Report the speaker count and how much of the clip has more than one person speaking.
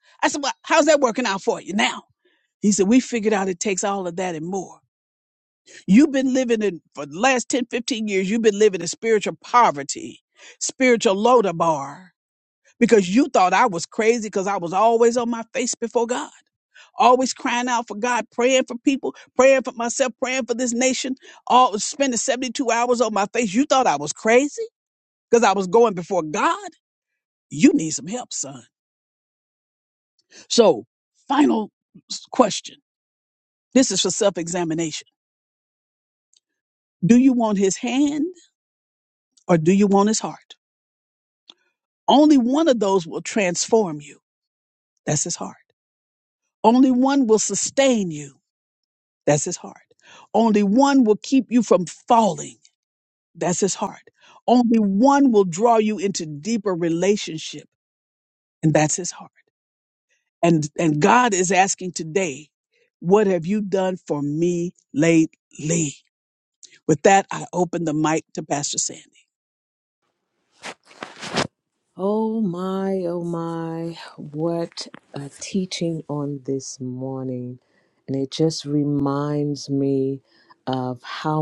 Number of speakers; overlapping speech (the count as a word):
two, no overlap